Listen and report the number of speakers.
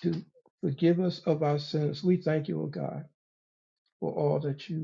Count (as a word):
one